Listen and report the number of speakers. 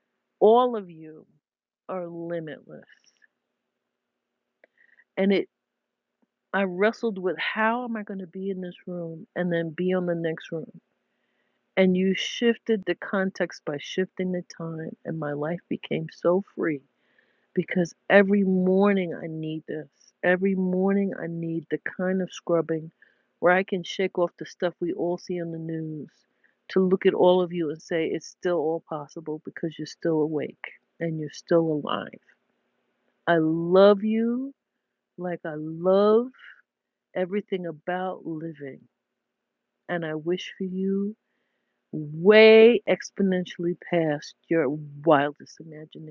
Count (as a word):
one